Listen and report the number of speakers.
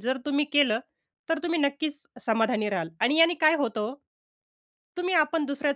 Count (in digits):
1